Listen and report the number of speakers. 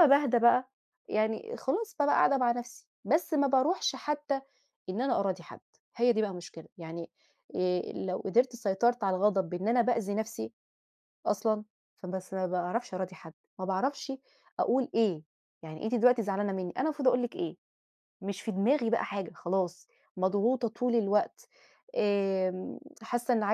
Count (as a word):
one